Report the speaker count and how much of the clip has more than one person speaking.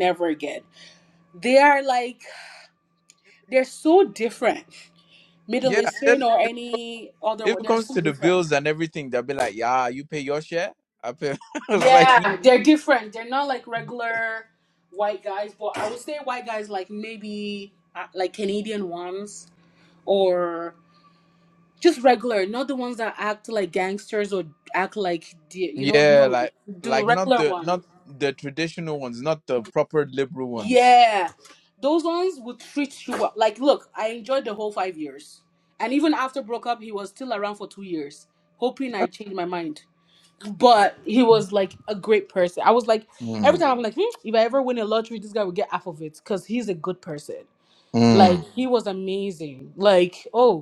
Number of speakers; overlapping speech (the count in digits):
2, about 9%